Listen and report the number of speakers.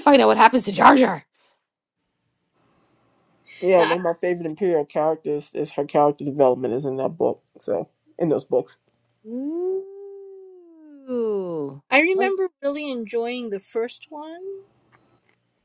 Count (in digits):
3